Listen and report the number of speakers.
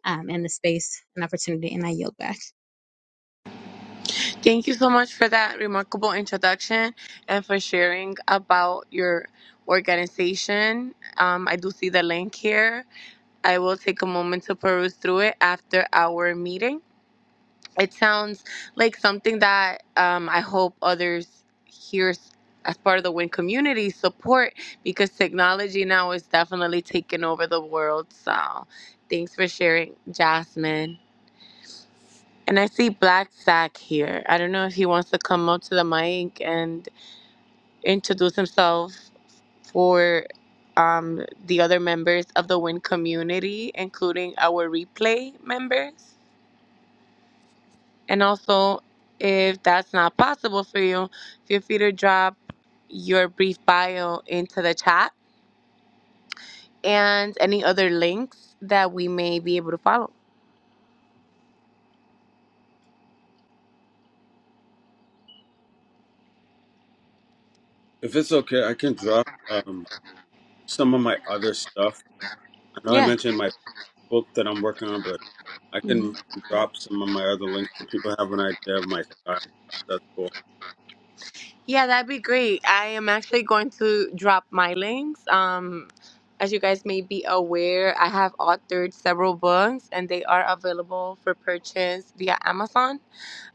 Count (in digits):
3